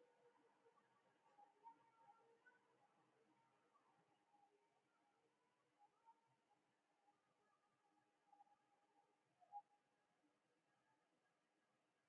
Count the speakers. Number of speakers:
0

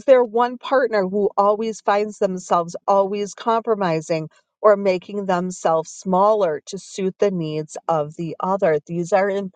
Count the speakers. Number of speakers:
1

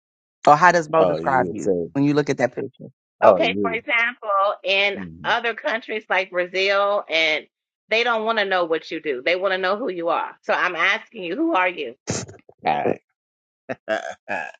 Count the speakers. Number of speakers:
3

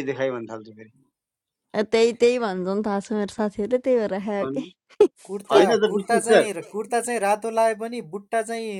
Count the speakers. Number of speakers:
3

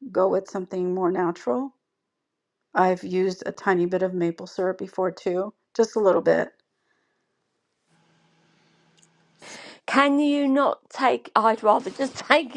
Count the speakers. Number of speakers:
2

